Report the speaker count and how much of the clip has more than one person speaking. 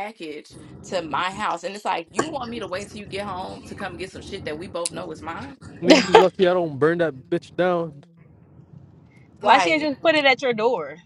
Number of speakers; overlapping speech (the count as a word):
three, about 4%